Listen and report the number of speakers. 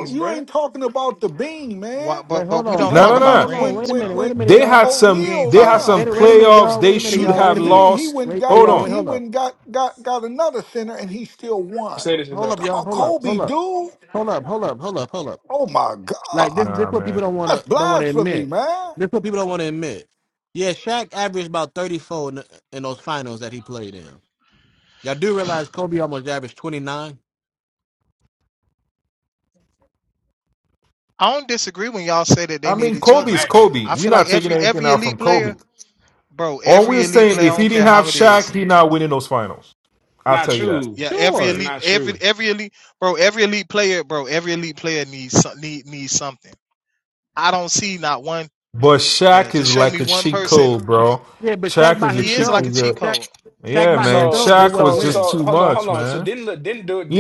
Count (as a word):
five